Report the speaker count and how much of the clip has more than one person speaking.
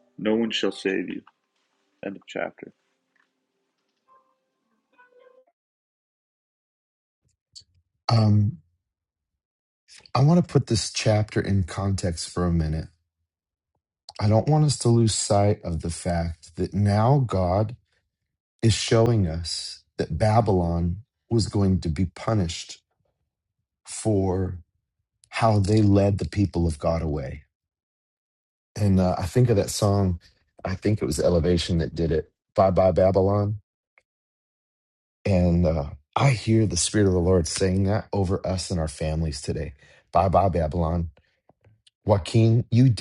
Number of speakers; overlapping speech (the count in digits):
2, no overlap